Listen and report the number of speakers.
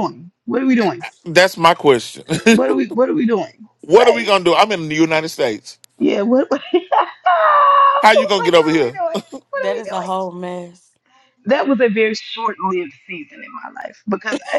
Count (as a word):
three